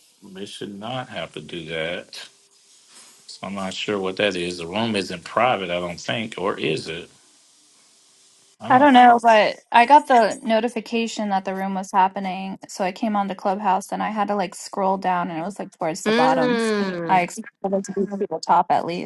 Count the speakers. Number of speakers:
3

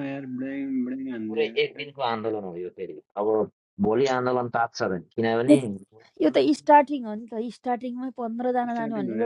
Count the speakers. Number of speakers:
3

